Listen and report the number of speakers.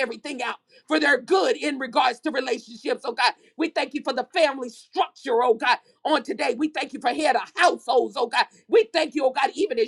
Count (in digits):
1